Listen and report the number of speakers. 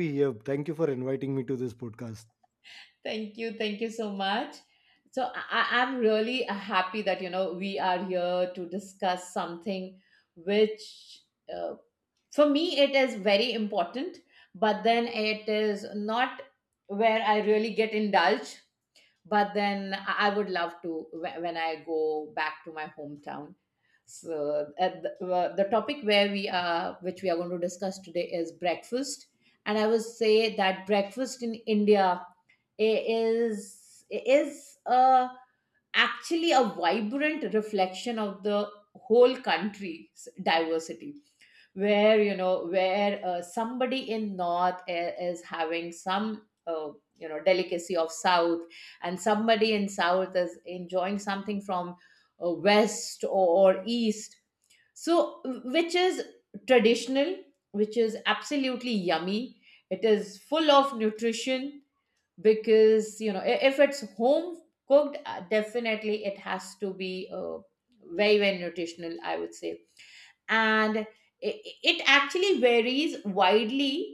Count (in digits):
2